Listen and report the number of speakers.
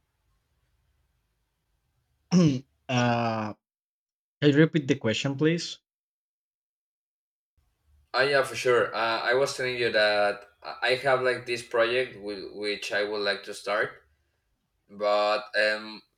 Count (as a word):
two